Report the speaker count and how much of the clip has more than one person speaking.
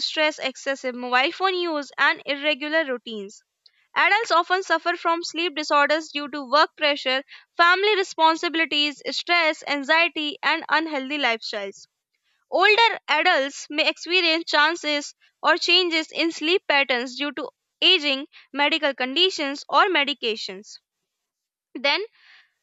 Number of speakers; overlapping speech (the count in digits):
1, no overlap